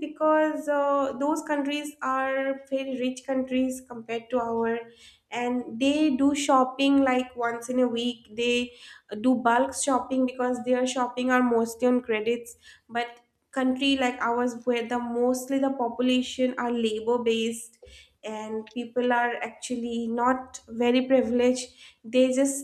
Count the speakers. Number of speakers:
one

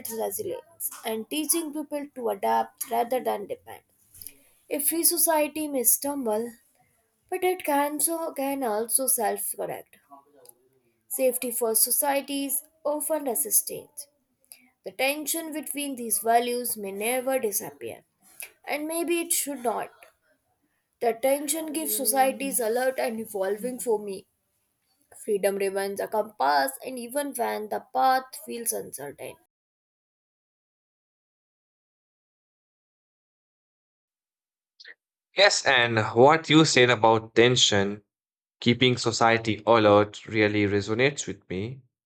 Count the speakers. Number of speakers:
two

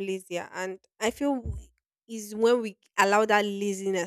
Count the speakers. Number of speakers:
one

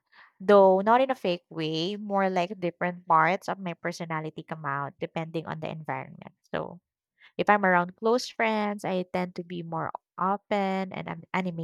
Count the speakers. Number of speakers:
one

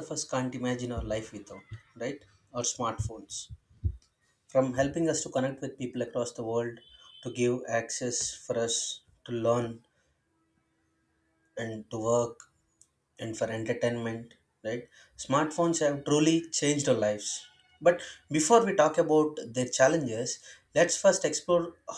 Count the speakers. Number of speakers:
one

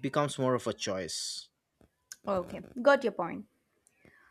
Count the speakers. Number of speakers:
two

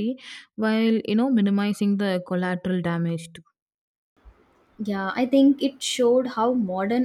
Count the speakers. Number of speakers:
two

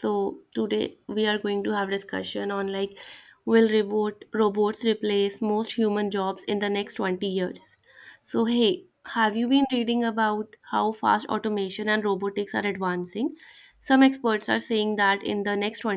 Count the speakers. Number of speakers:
one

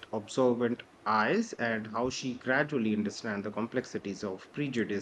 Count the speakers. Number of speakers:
one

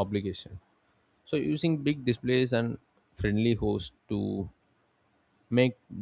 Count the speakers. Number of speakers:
one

